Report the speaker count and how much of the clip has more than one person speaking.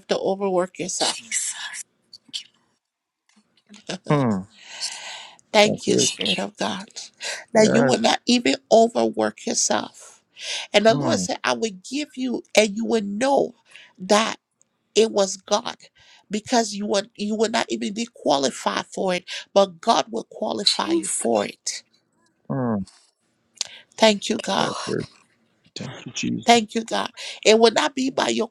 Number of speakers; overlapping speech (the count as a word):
three, about 11%